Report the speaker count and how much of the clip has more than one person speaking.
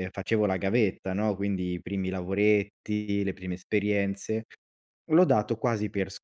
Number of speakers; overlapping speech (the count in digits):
1, no overlap